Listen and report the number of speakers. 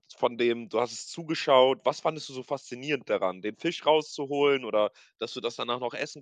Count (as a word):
one